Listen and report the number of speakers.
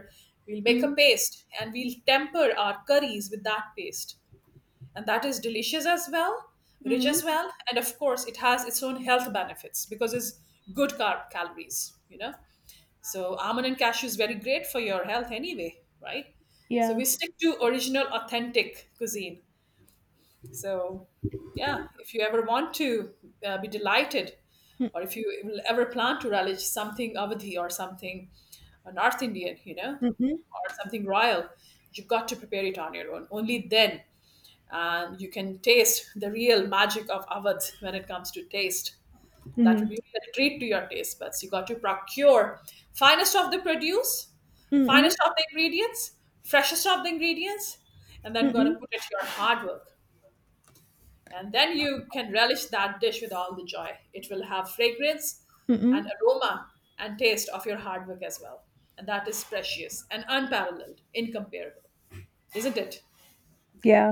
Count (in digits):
2